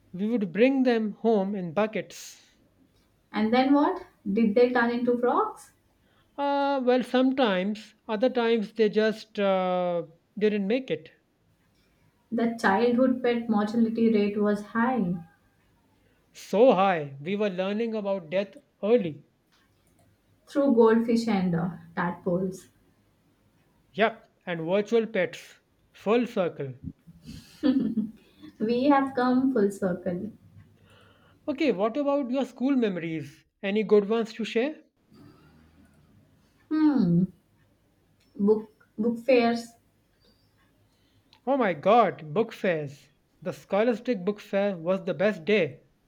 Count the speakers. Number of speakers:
2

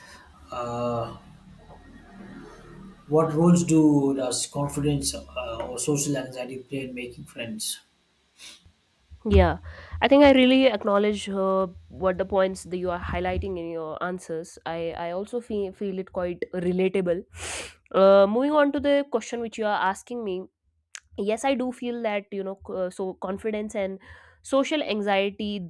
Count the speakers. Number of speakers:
2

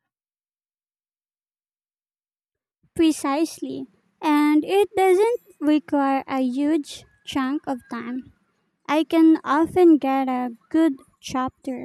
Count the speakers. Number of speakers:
1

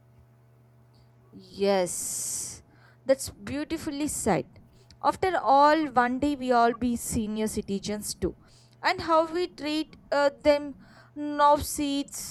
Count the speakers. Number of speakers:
1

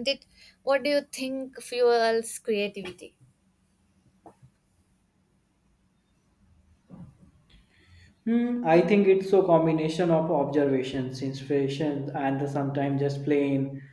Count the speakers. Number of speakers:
2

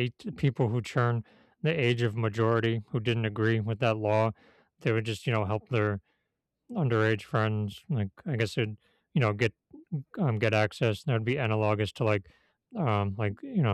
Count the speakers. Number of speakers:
1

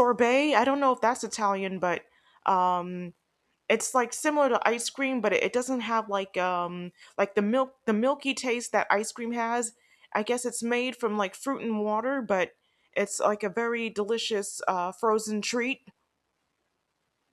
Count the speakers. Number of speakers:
1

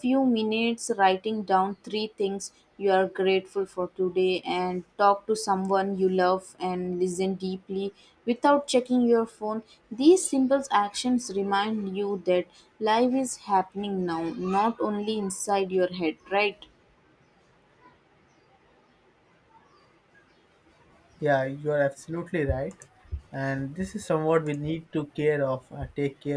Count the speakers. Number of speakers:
2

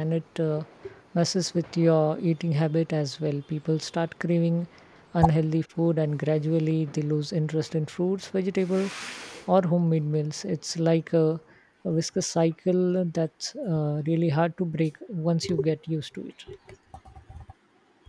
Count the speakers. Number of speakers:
1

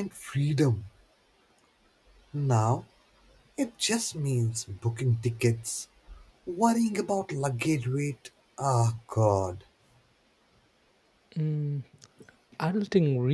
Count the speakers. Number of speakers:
2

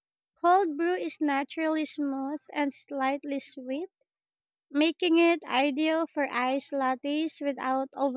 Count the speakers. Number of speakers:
1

